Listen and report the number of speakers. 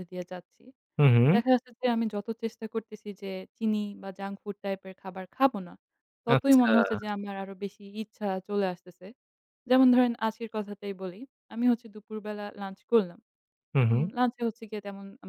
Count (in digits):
2